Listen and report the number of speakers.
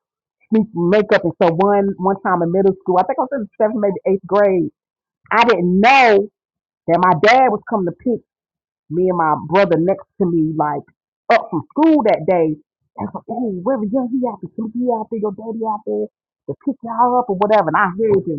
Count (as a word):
one